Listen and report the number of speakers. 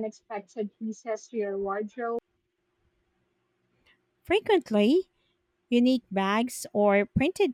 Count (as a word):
two